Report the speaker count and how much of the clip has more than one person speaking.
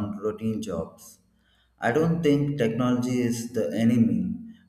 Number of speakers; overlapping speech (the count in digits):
1, no overlap